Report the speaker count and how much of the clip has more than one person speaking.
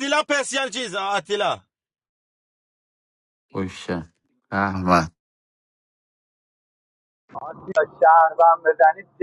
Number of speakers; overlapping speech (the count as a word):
three, no overlap